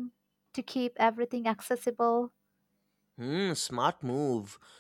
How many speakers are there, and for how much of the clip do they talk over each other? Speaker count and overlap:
2, no overlap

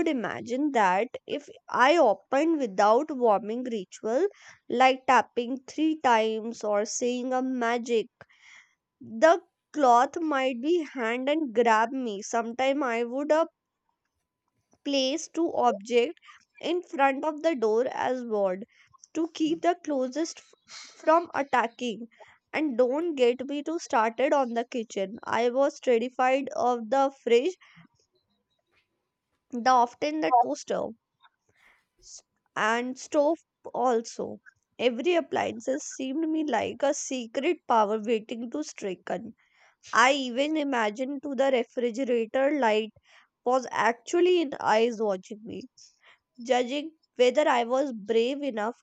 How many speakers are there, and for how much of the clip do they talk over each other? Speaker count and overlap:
1, no overlap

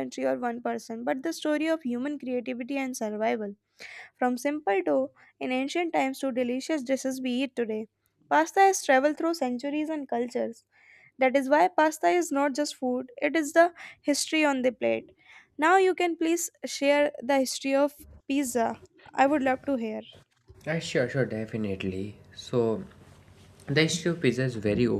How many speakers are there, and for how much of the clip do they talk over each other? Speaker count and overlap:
2, no overlap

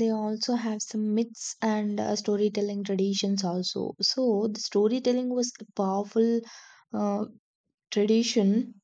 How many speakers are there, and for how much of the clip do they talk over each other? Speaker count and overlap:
1, no overlap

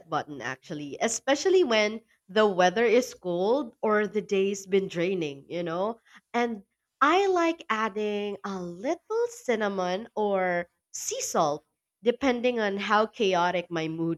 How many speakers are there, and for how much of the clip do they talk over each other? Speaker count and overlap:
1, no overlap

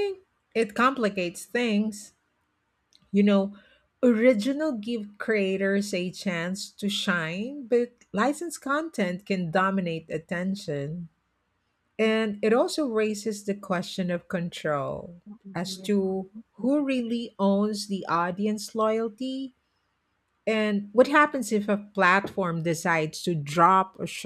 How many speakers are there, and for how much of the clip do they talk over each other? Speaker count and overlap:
1, no overlap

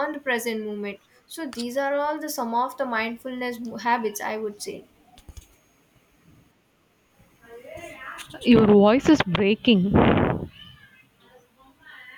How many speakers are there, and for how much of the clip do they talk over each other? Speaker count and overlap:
2, no overlap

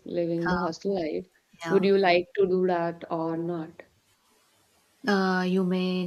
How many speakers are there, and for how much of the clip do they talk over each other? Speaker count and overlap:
2, about 8%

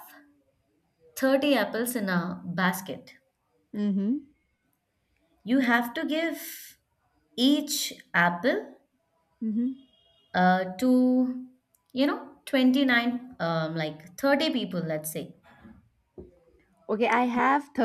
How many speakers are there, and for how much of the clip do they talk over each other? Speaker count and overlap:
2, no overlap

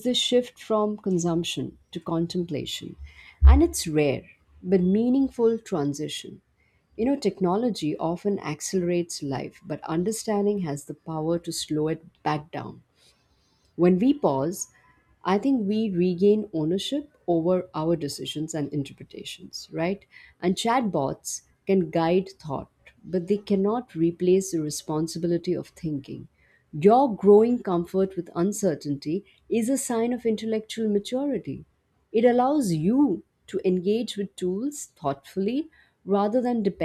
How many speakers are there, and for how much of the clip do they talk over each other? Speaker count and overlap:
1, no overlap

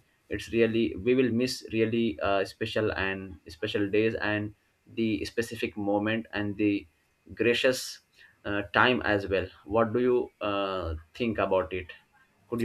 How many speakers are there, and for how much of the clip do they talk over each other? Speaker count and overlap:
1, no overlap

